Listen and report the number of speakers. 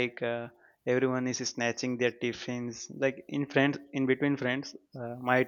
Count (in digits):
1